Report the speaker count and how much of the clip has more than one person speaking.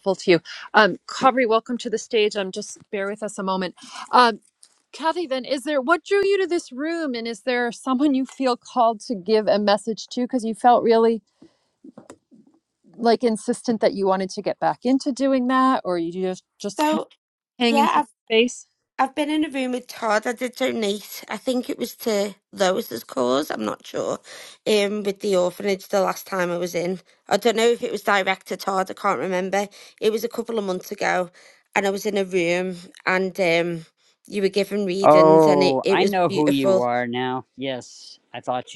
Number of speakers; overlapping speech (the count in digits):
3, about 6%